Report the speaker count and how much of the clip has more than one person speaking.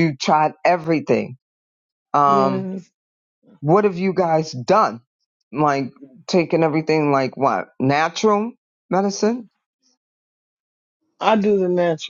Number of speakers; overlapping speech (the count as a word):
two, about 3%